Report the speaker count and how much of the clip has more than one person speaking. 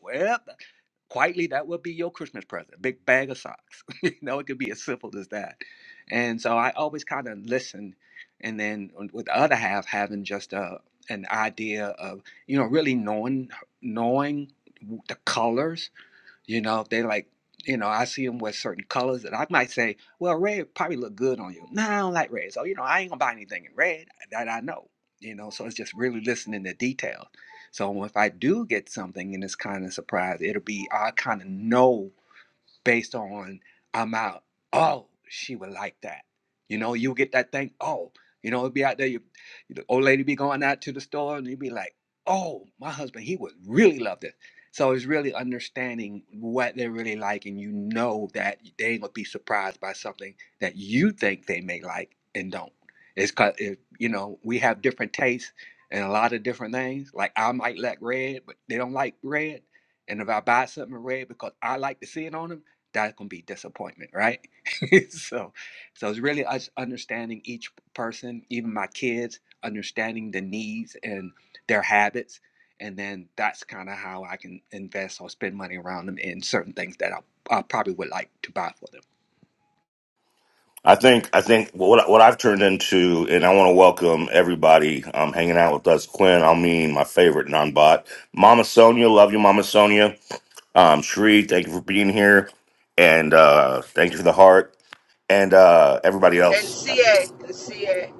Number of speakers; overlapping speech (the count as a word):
three, under 1%